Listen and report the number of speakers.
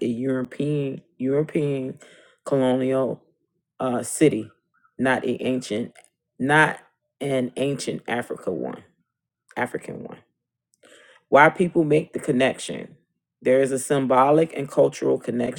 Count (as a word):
one